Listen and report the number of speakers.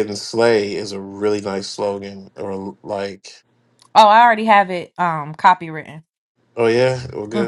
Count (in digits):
2